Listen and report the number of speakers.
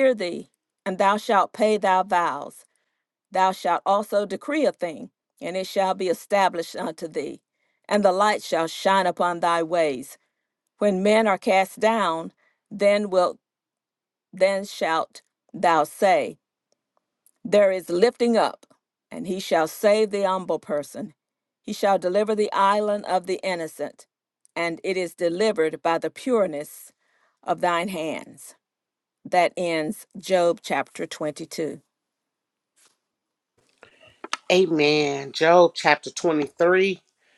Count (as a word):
two